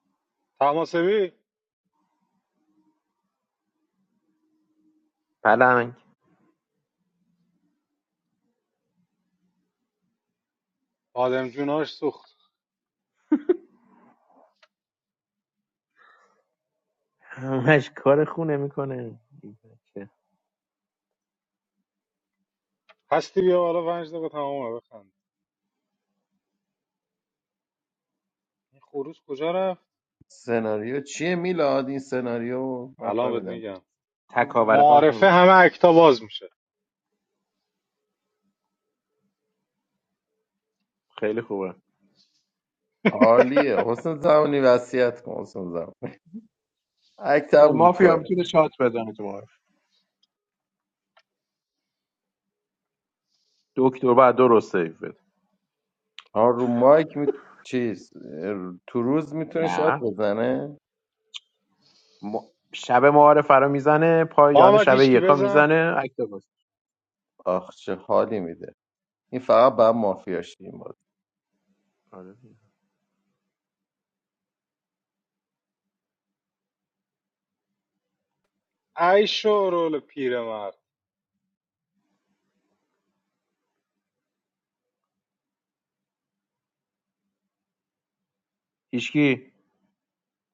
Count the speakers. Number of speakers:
3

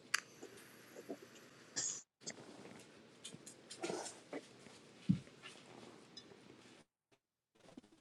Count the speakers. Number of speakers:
0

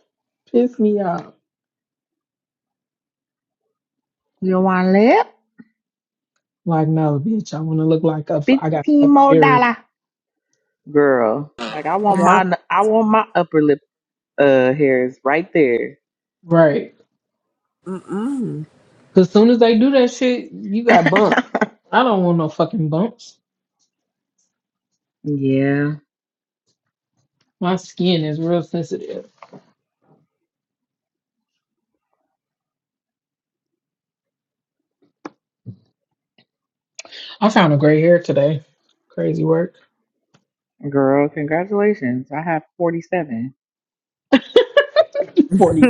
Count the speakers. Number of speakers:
3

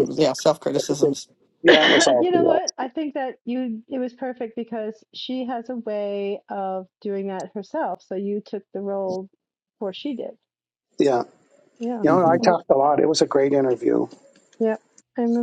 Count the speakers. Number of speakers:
3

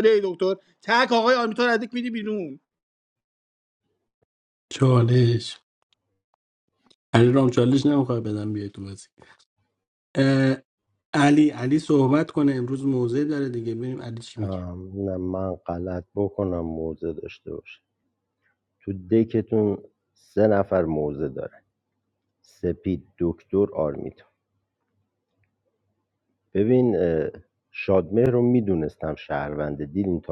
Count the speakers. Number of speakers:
3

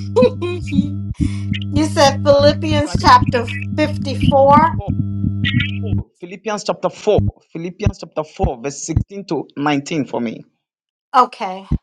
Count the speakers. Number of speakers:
2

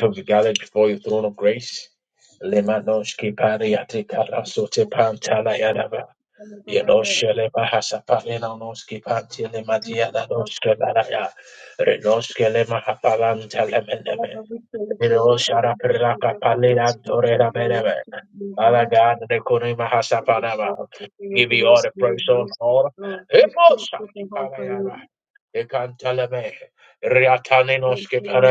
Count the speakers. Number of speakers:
2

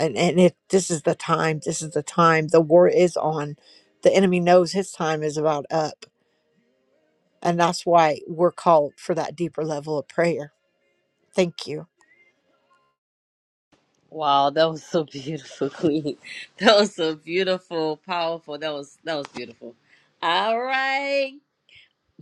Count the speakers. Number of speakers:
2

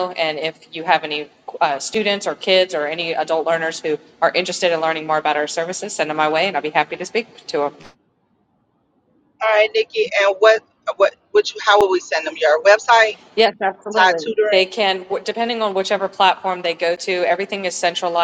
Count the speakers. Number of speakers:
2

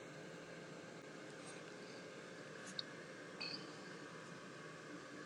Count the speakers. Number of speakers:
0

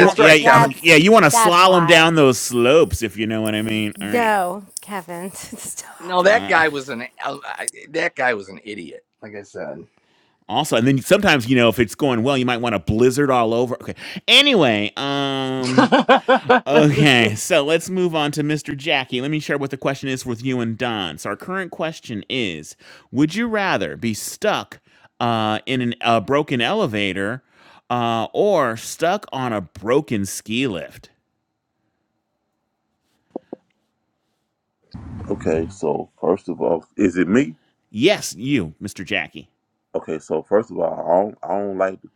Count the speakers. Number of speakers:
4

